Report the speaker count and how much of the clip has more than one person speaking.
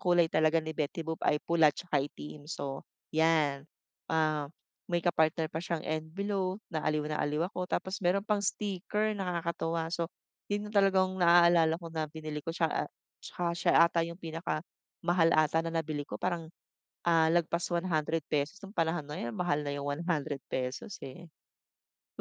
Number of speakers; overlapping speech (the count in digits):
1, no overlap